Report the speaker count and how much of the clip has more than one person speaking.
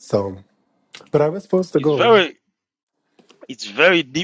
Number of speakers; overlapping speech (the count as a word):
two, about 10%